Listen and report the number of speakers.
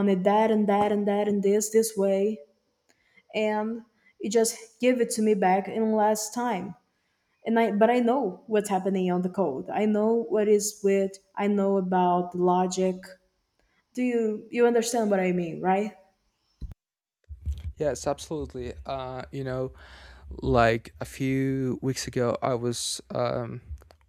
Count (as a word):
two